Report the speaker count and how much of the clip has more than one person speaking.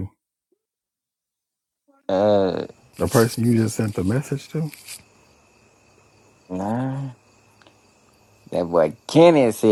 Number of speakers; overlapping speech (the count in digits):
2, no overlap